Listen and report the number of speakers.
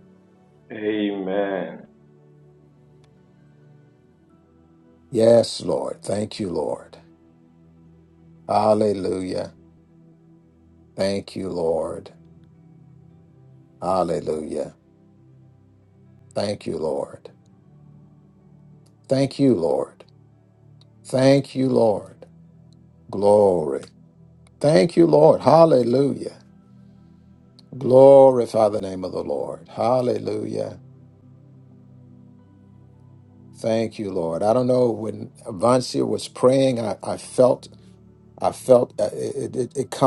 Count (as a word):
two